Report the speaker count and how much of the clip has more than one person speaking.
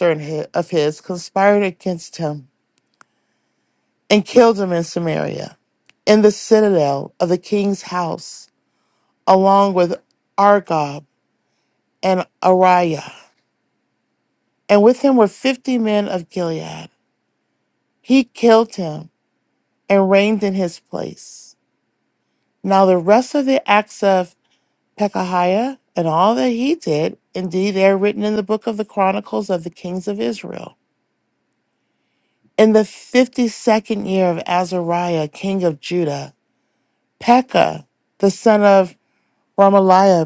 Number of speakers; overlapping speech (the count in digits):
1, no overlap